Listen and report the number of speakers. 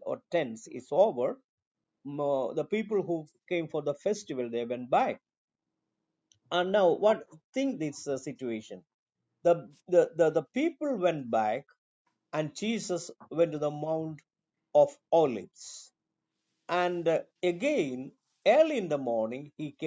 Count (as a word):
one